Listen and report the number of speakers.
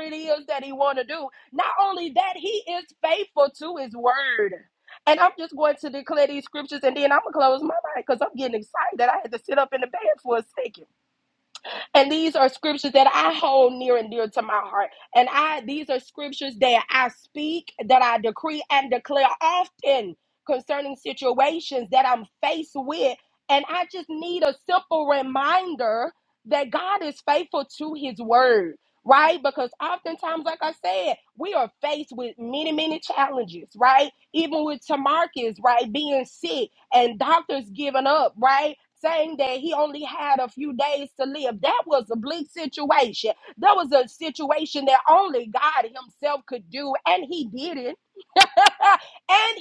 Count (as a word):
one